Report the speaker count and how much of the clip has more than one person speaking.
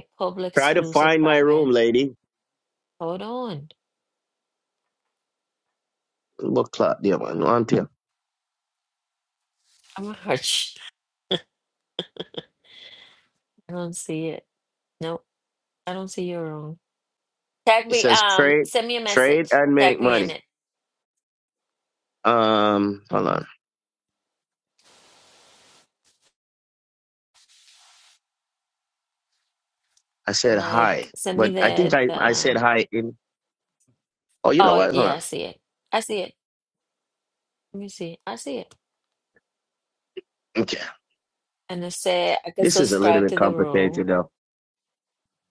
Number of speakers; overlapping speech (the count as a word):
two, about 16%